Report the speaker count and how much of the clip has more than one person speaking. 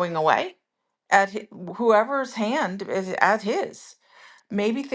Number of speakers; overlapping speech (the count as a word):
one, no overlap